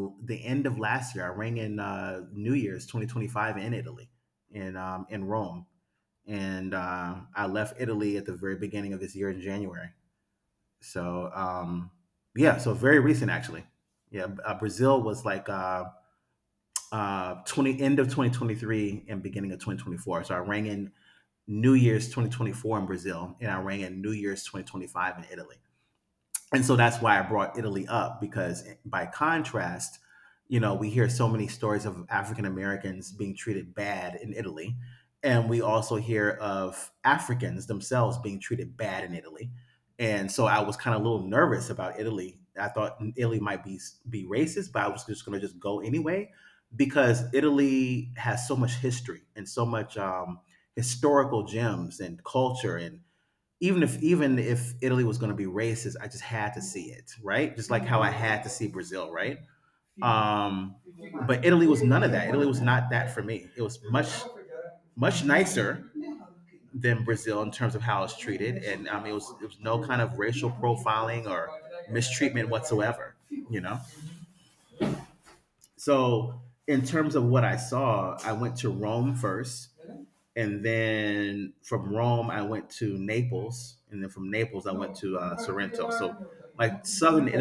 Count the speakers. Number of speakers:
one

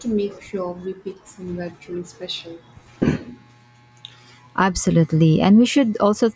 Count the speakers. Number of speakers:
two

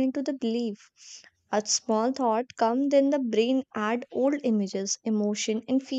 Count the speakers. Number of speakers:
one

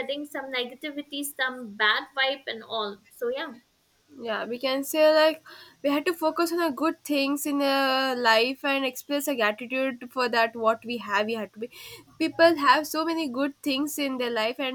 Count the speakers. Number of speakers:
two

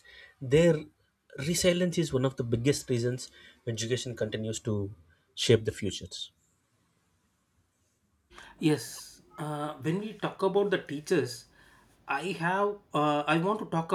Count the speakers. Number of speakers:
two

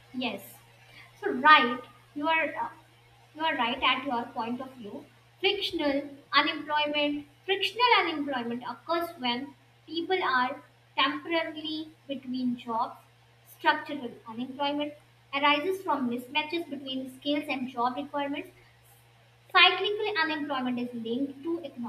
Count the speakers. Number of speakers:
one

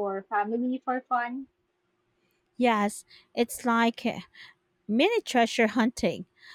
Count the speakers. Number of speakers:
two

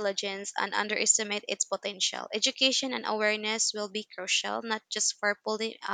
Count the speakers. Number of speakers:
one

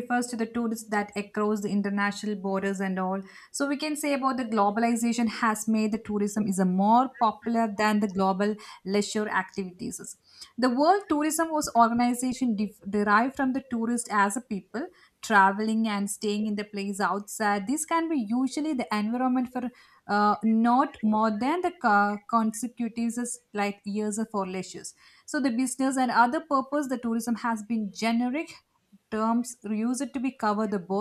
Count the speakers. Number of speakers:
one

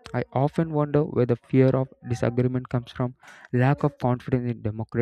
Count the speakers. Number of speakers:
one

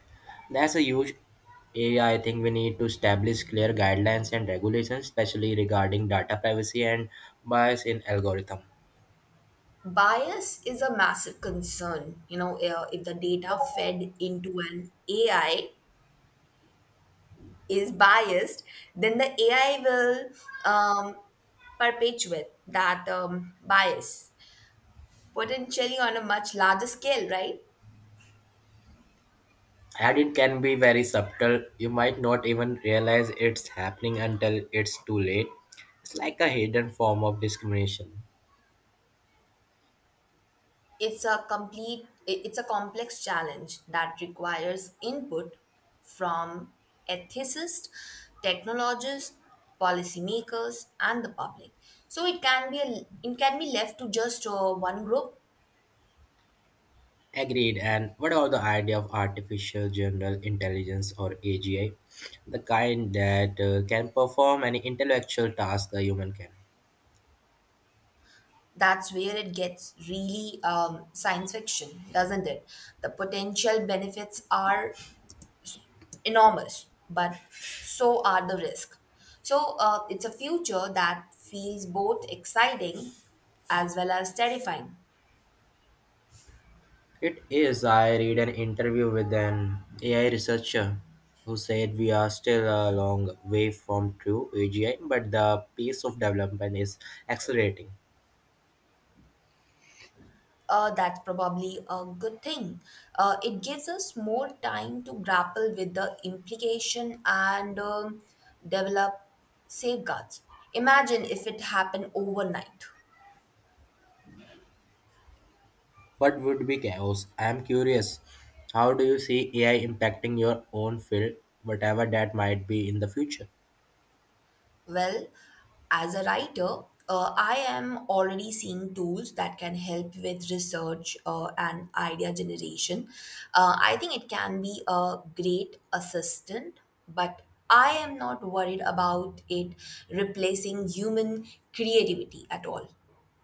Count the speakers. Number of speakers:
two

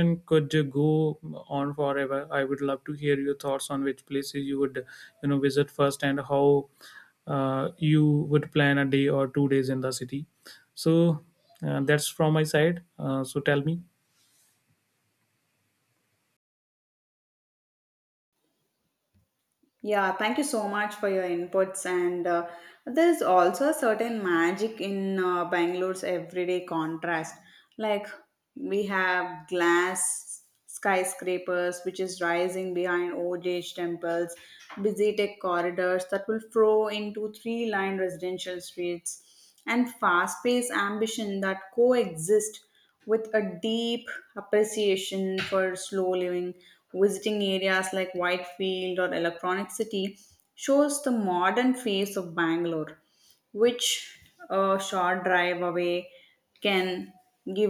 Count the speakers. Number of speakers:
two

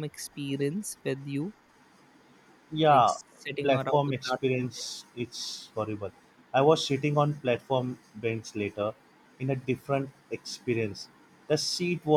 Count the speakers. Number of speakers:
two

